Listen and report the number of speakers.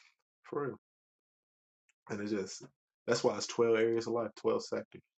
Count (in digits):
1